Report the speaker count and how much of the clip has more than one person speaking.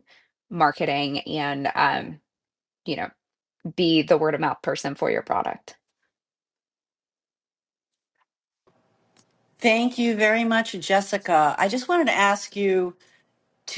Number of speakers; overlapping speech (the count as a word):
two, no overlap